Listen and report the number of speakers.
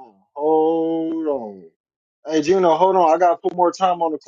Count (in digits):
1